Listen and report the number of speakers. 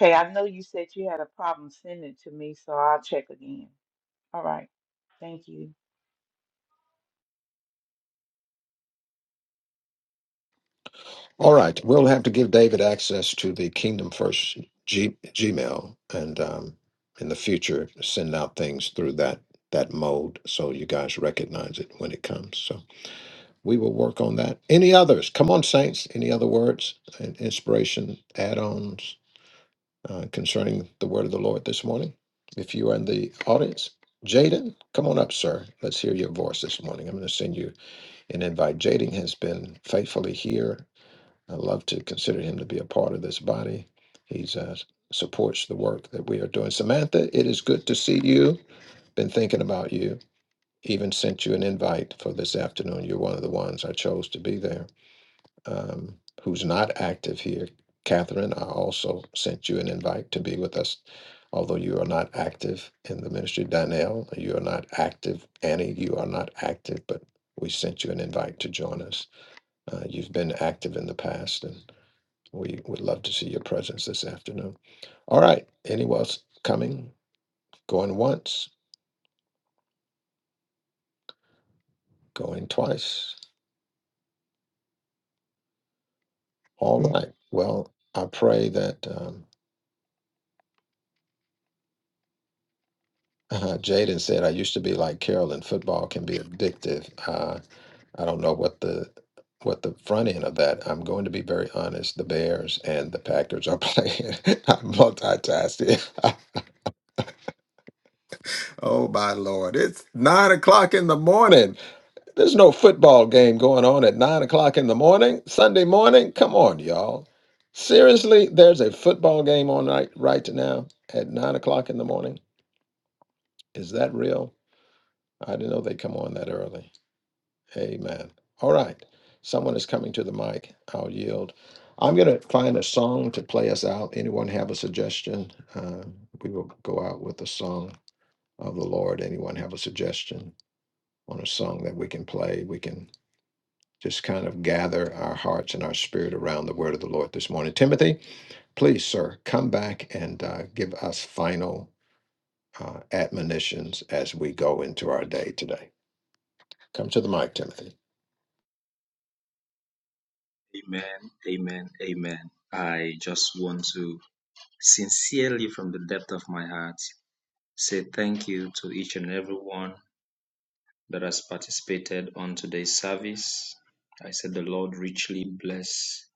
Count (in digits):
3